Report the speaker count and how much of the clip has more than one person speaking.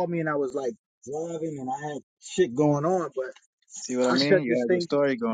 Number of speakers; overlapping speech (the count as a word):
two, about 15%